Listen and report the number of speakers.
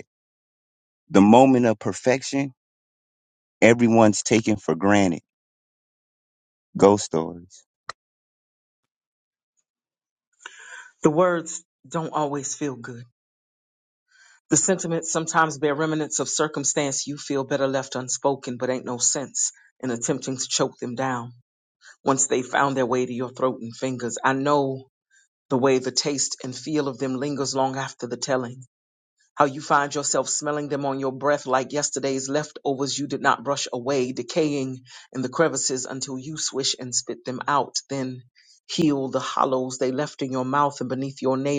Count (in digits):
2